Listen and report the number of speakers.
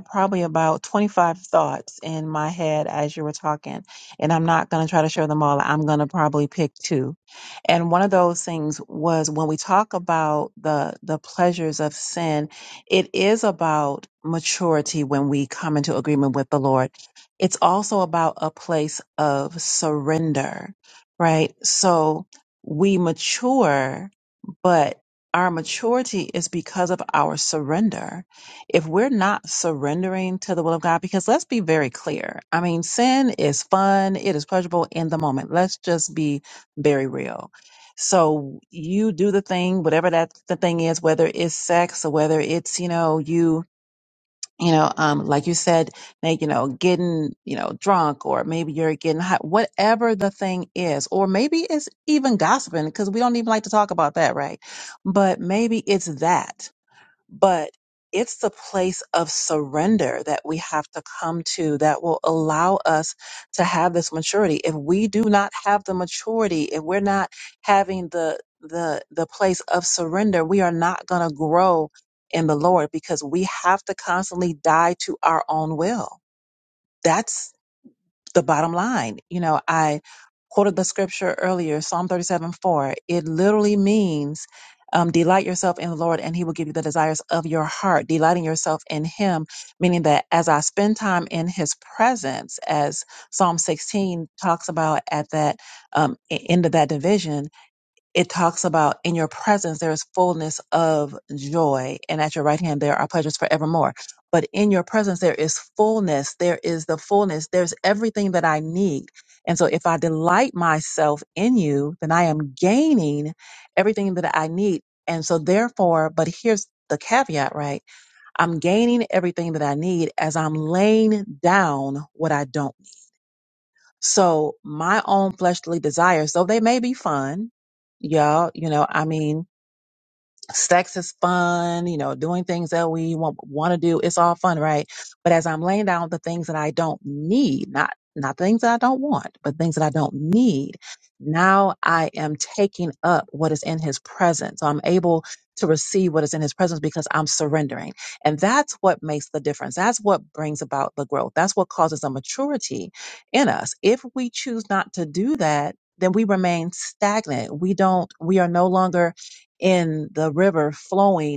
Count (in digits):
1